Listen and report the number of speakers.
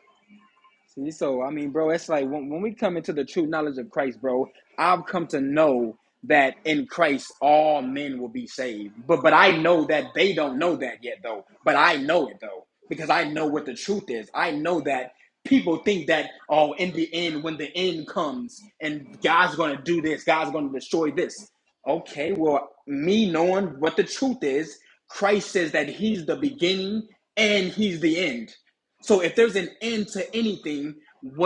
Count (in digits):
1